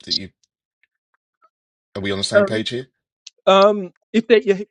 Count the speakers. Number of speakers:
2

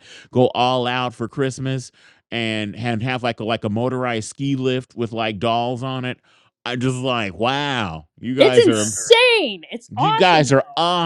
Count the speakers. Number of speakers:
2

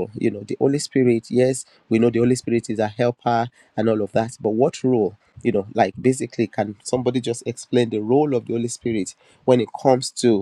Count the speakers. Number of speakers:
1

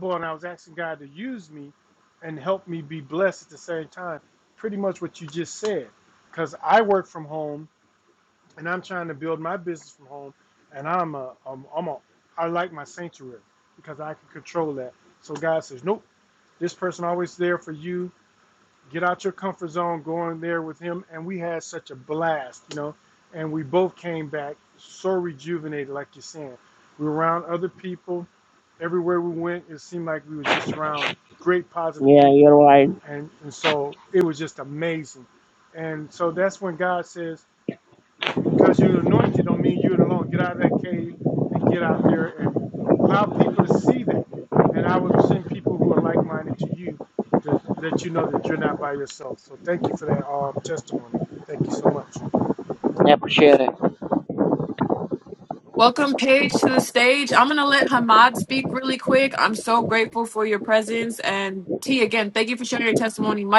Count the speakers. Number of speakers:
3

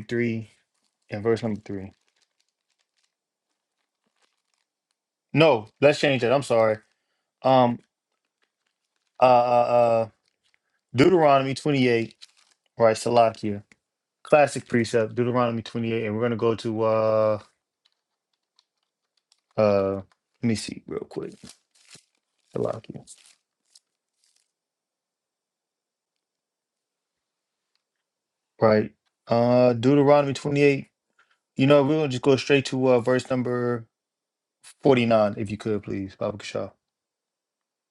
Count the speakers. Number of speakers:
1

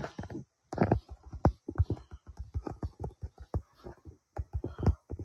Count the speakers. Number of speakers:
0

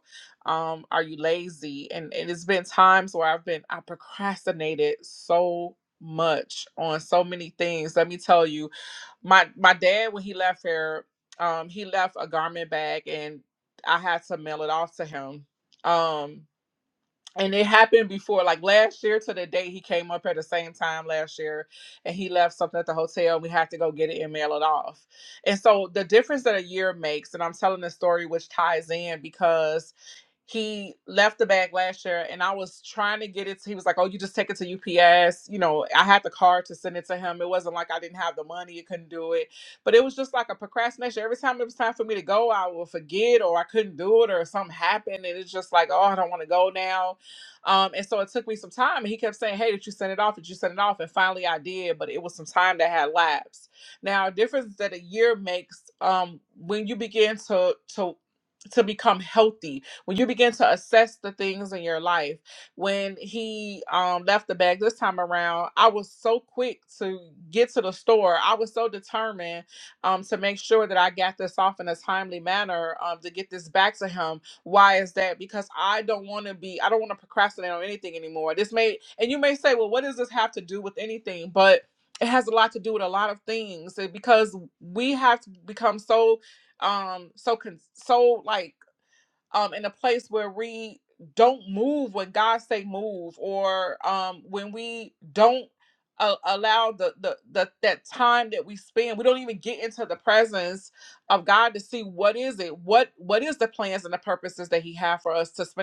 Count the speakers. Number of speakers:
1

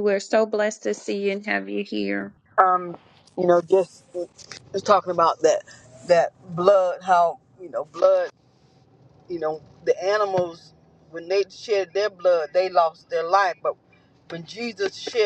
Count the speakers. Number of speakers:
2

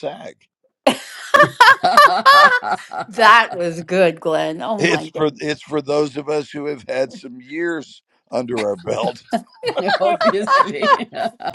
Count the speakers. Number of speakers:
3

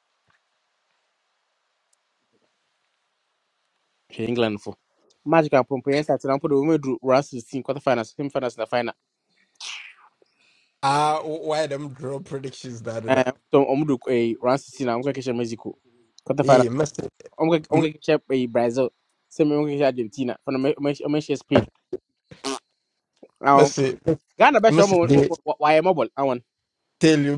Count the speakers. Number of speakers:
2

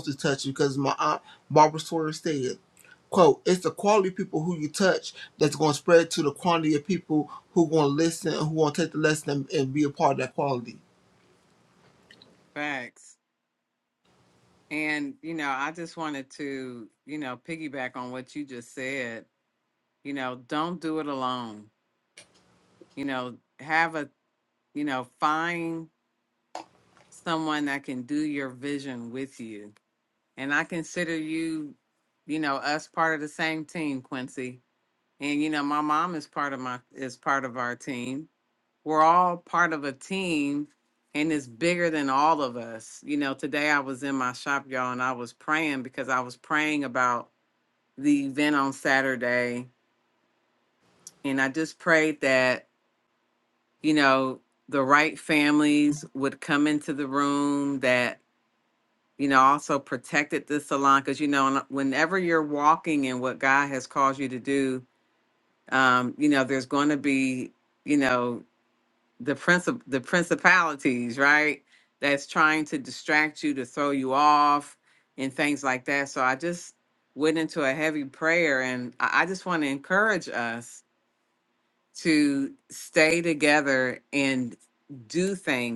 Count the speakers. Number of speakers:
2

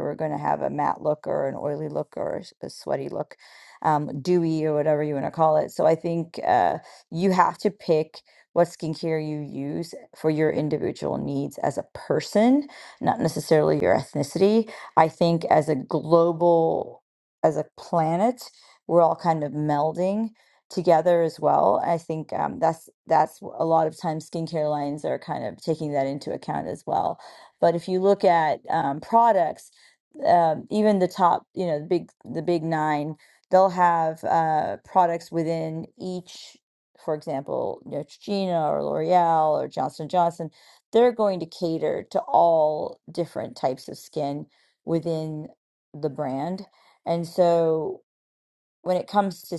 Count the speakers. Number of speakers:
1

